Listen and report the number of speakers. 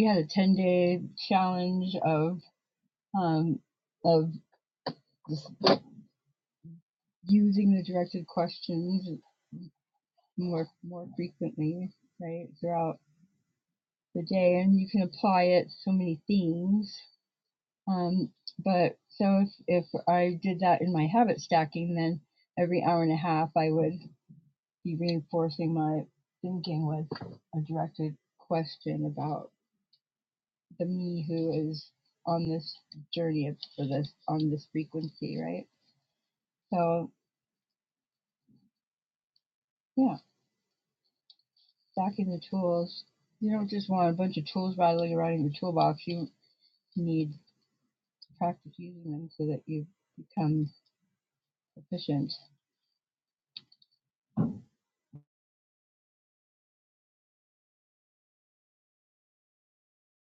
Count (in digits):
1